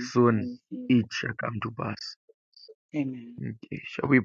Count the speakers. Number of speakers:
2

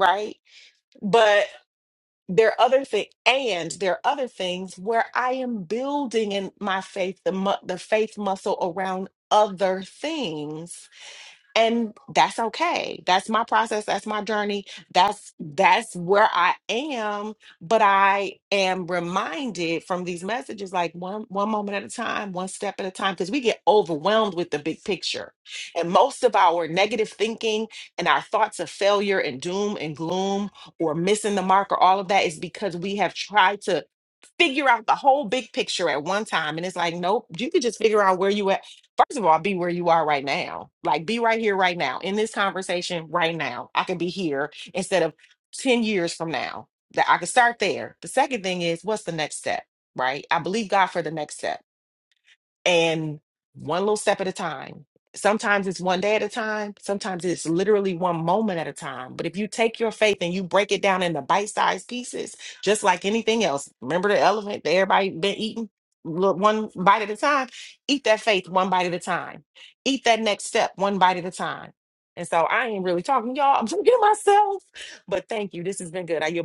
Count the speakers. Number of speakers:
1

